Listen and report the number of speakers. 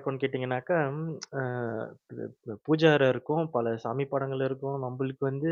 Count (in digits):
1